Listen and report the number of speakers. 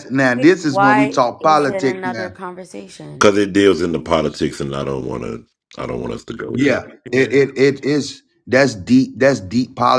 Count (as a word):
three